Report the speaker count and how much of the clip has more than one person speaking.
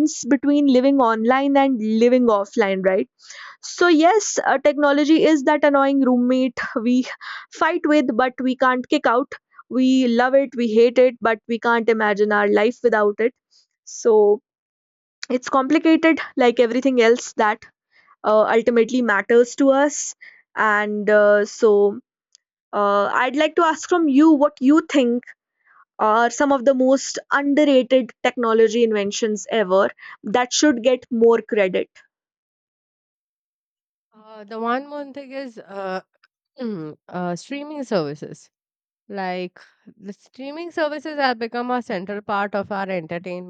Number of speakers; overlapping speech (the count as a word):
two, no overlap